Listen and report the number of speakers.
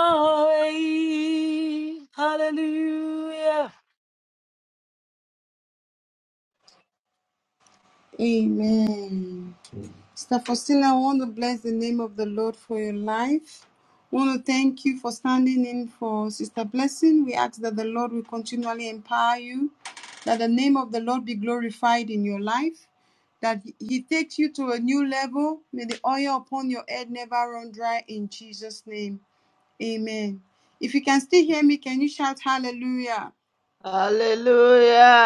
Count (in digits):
3